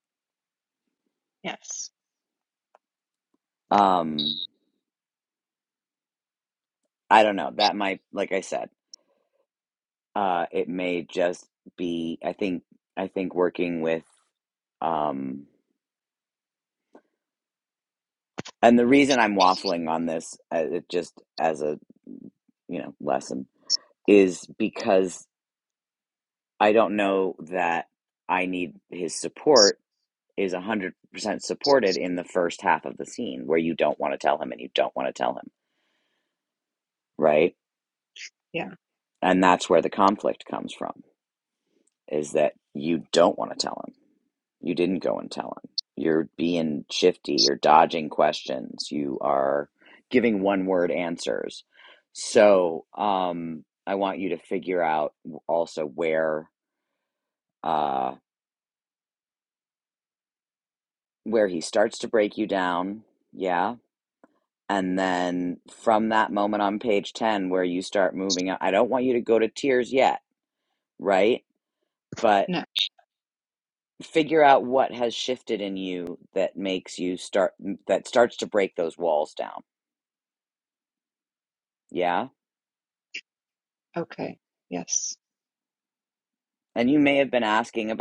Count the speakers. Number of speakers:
two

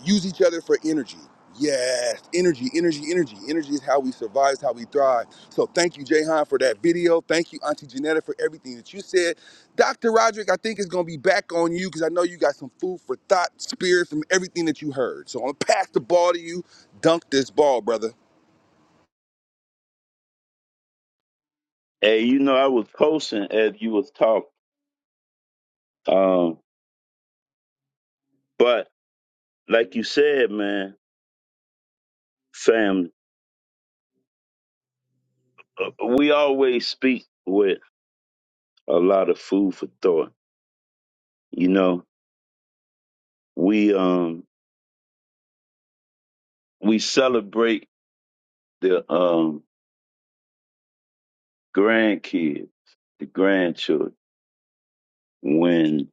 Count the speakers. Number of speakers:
two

